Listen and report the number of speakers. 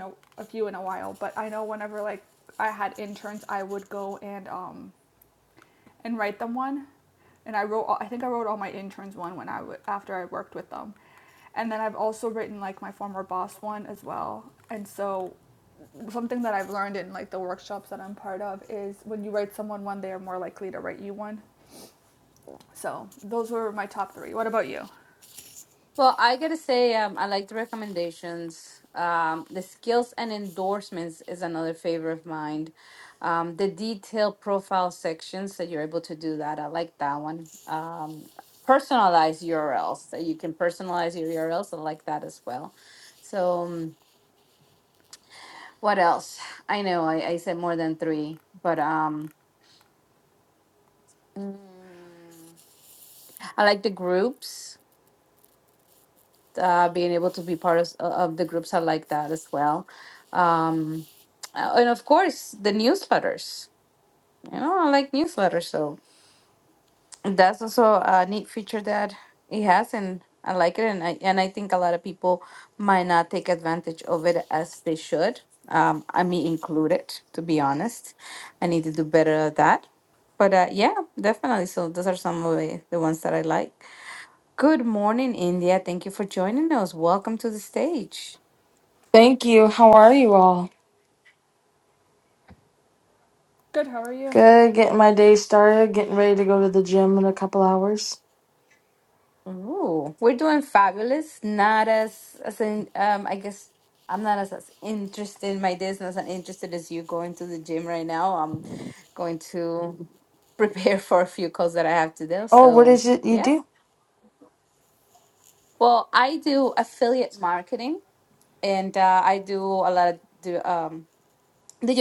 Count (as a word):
three